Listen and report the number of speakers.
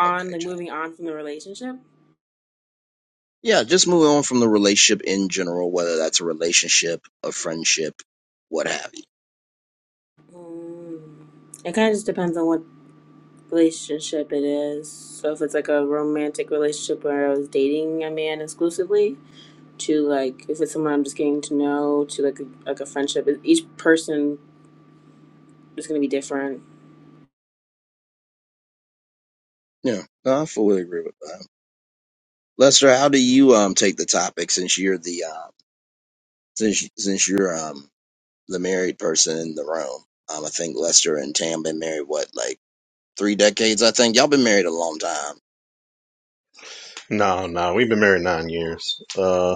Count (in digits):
3